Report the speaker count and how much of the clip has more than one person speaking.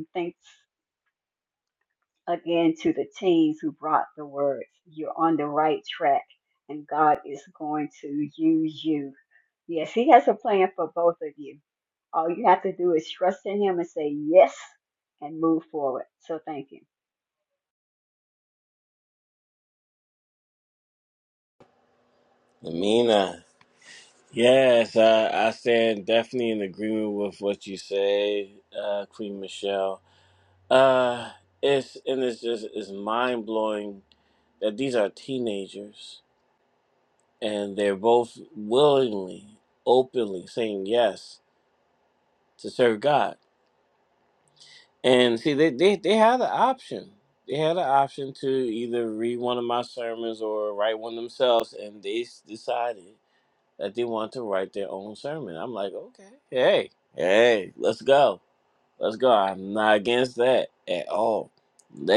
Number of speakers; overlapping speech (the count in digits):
2, no overlap